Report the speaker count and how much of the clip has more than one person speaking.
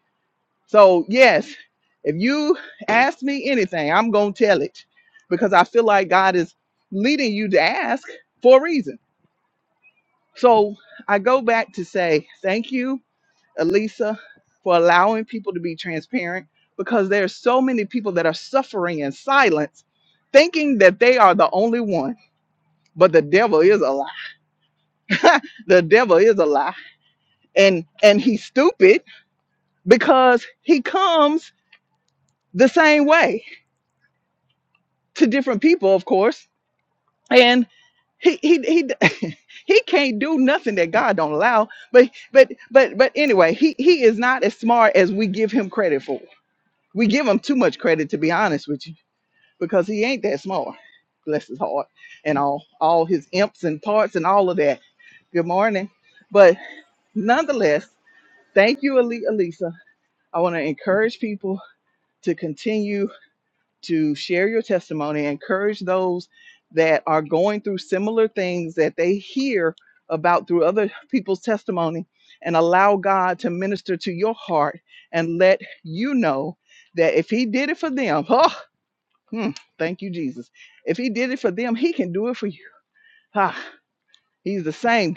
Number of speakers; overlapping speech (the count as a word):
one, no overlap